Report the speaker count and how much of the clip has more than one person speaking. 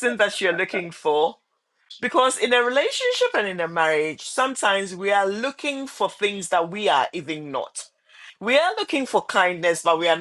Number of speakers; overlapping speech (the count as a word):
one, no overlap